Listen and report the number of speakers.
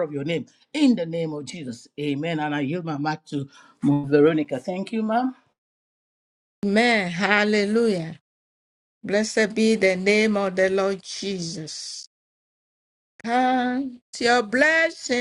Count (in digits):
2